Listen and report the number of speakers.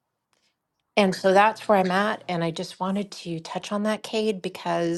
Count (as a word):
one